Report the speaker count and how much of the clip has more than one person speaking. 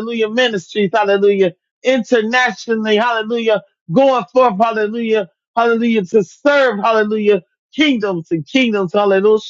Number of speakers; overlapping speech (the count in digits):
1, no overlap